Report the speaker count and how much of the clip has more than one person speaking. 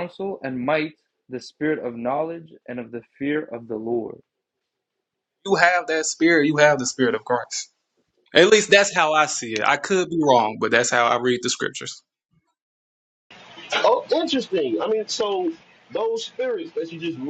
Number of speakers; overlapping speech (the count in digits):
3, no overlap